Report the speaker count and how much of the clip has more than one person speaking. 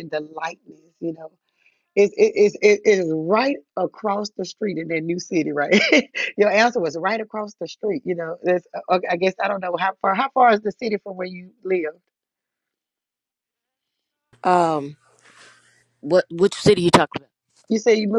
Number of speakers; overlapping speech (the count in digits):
2, no overlap